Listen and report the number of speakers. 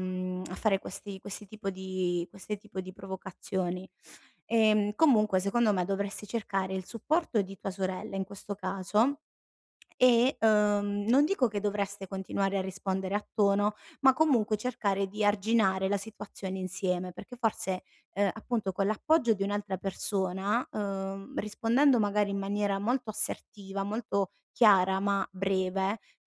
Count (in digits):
1